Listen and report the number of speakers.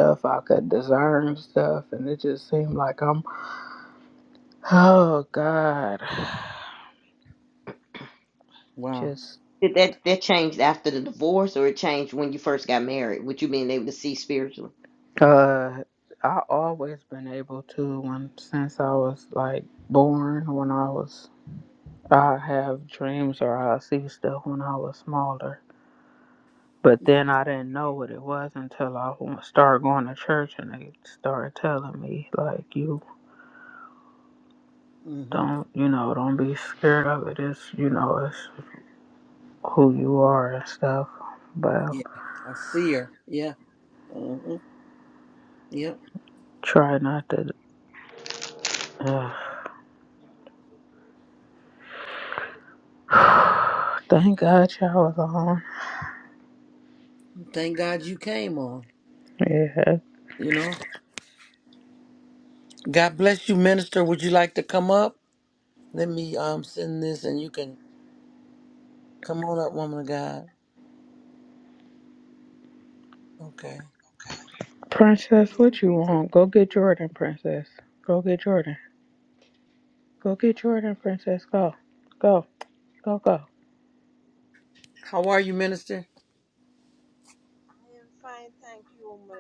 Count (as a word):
four